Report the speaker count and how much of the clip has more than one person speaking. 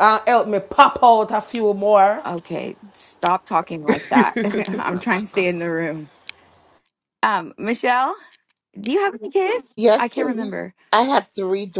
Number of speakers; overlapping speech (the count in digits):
3, about 5%